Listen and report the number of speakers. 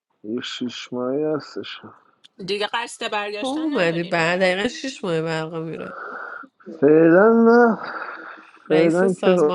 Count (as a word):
three